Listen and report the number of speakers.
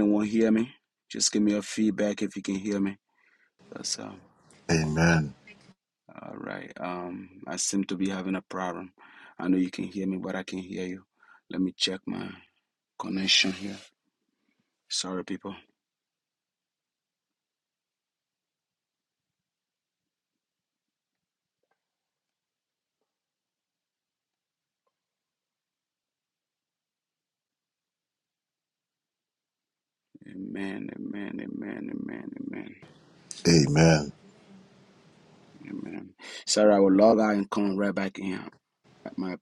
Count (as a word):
two